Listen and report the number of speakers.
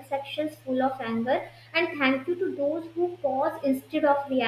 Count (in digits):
1